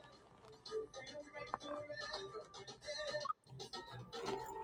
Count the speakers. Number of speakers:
zero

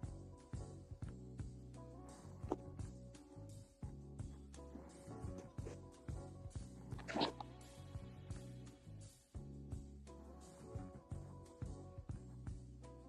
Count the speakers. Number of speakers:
zero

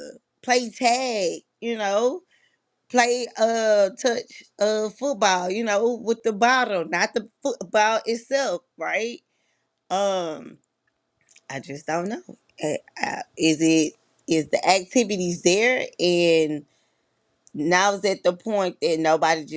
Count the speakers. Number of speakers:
one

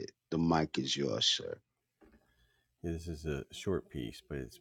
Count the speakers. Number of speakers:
two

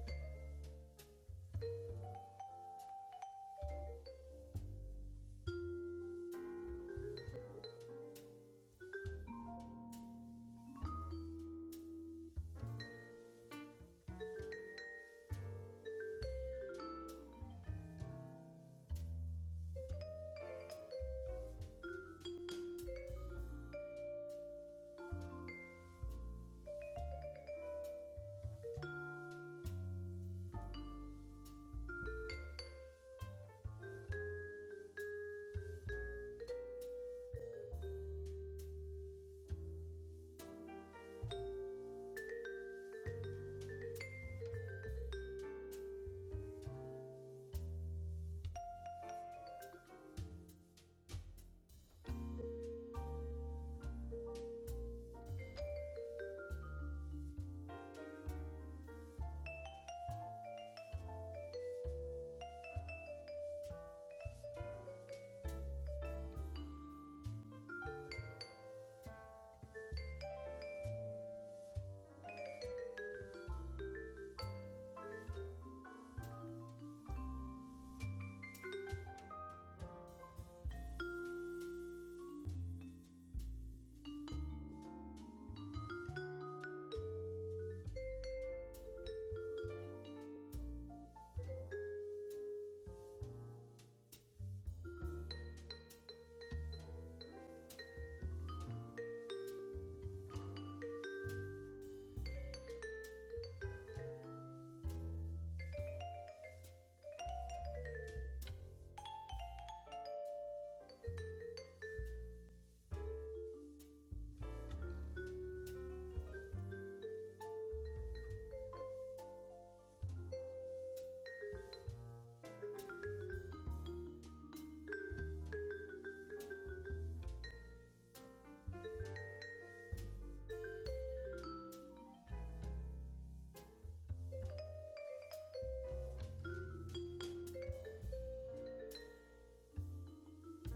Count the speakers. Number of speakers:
zero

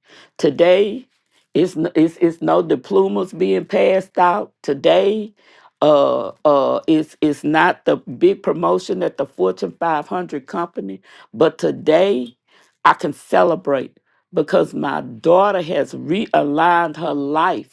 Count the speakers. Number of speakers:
one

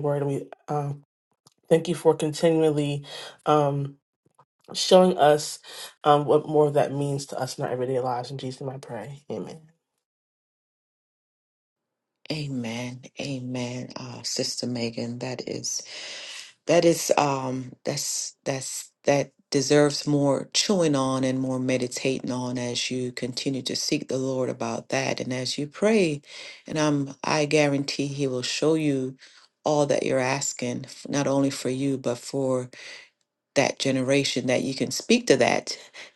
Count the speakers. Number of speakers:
two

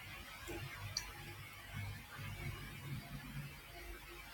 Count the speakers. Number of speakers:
zero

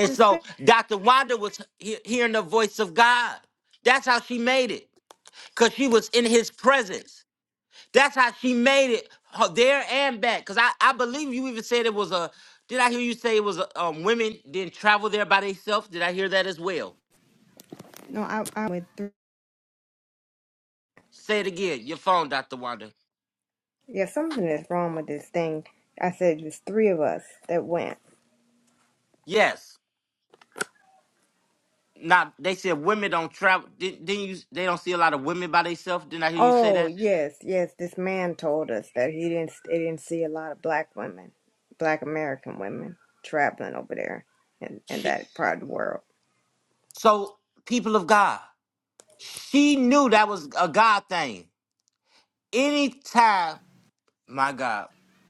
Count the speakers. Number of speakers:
two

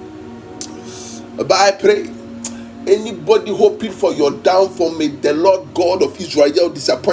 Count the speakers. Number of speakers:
one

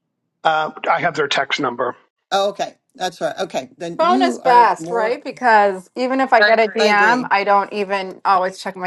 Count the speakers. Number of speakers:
three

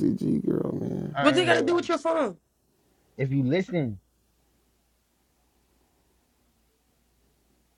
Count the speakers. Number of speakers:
three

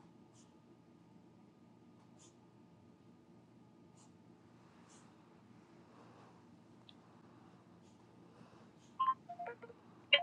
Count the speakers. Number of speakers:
zero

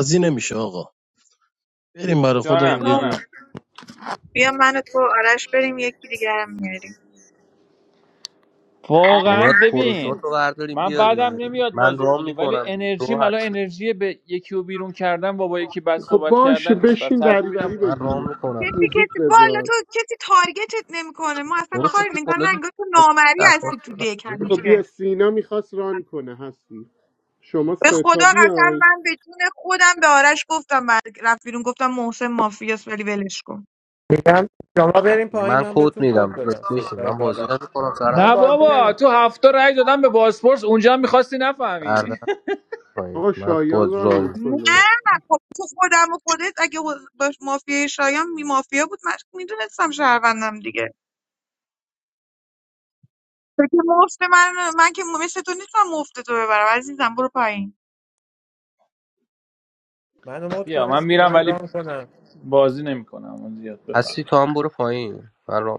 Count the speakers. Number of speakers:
six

